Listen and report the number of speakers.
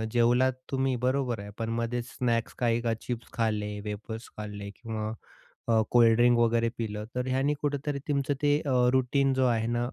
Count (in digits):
1